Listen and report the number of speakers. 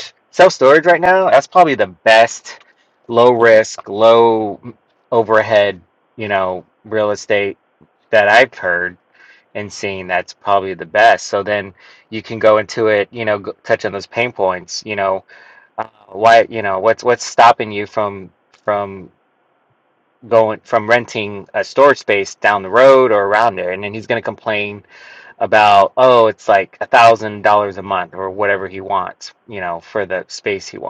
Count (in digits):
1